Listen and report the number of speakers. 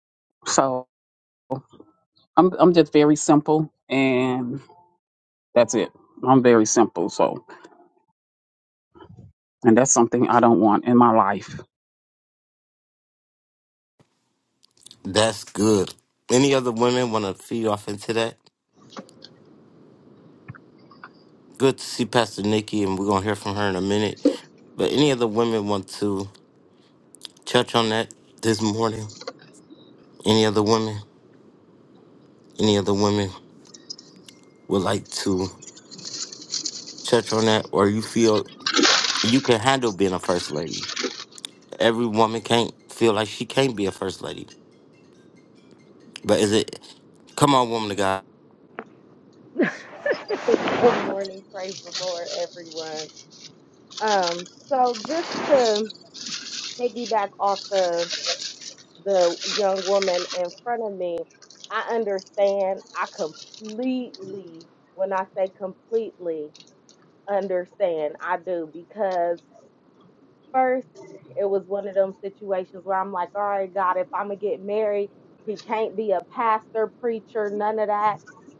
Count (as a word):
three